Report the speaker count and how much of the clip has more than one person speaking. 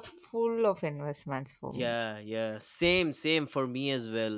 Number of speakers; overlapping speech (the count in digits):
2, about 6%